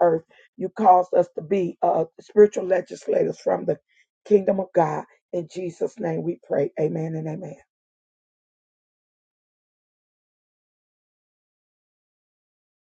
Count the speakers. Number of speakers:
one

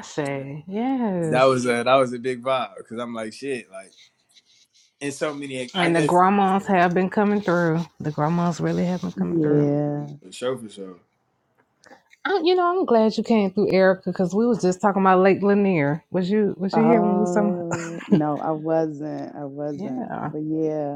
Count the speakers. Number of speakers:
three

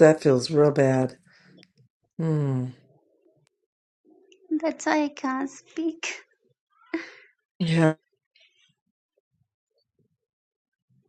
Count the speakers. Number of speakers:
two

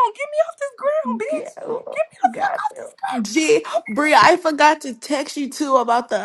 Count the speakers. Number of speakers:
three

